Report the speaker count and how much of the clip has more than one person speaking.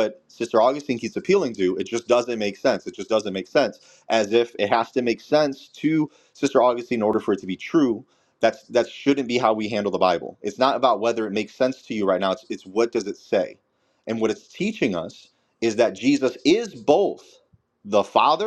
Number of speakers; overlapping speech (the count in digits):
1, no overlap